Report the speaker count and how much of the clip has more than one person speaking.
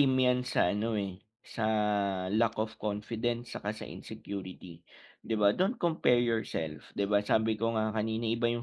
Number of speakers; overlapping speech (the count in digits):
1, no overlap